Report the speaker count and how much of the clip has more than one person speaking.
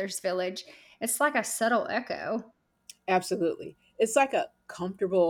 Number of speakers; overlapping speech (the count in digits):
2, no overlap